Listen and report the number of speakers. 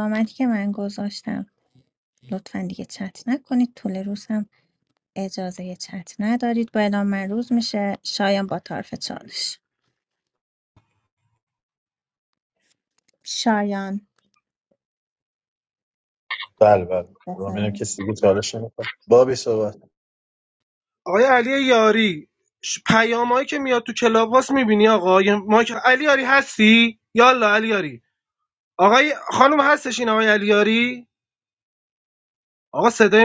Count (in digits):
3